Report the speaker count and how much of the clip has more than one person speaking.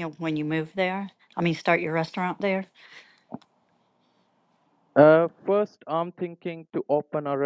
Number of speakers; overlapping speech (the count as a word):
two, no overlap